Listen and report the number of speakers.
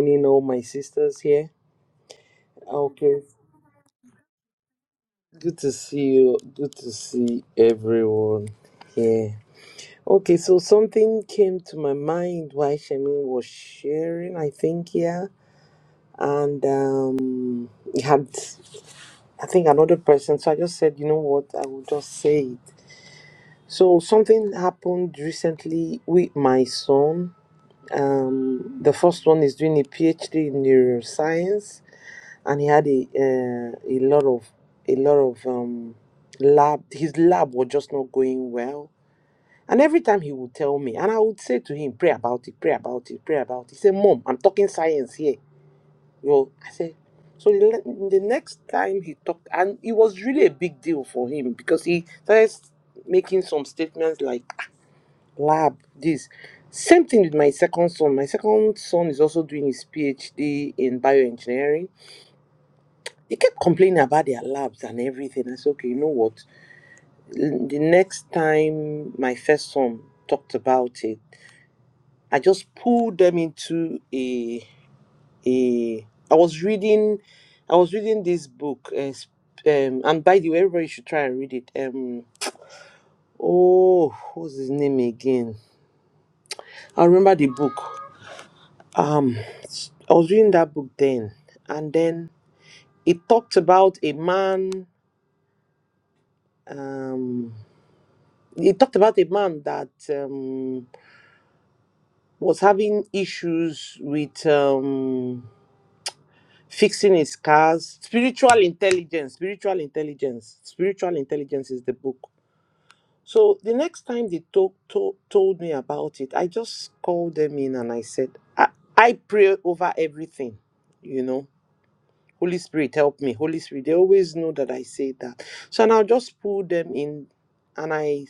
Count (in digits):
1